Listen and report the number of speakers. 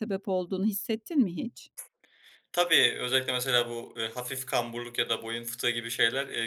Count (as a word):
two